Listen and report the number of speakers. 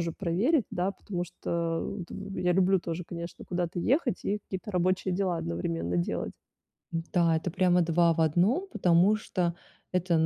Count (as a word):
two